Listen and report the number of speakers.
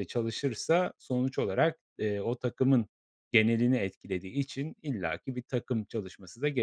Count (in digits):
1